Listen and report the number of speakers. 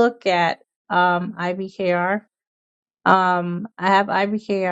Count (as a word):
one